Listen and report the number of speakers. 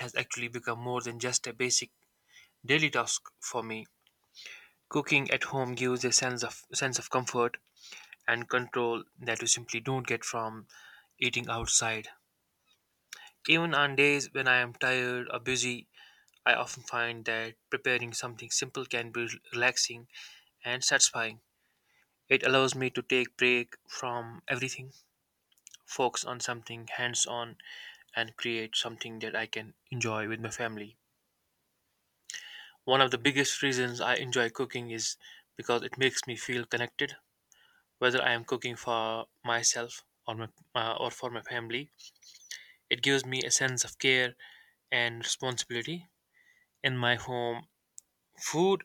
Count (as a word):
one